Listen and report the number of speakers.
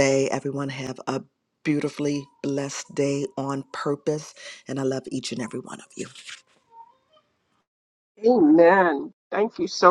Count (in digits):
2